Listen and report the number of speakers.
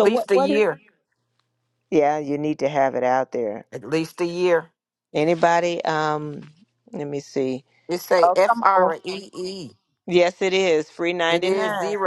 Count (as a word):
two